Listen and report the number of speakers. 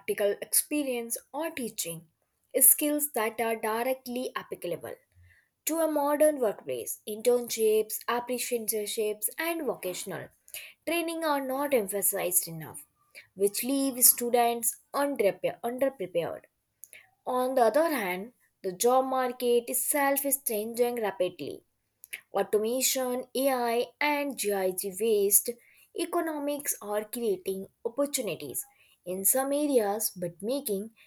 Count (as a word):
one